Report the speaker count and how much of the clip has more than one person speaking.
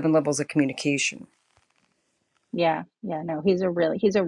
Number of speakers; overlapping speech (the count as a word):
two, no overlap